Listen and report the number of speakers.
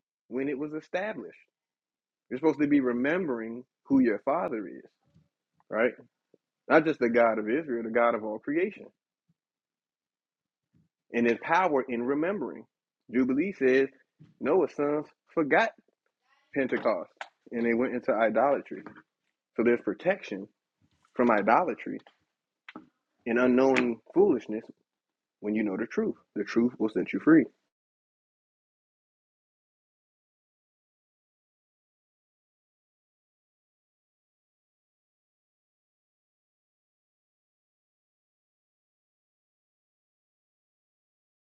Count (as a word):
one